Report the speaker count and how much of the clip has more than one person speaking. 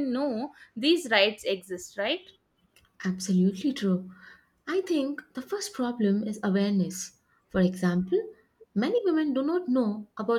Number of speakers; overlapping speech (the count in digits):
2, no overlap